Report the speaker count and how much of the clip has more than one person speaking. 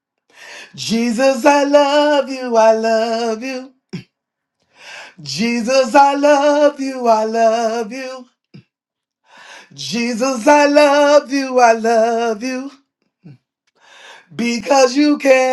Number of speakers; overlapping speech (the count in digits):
1, no overlap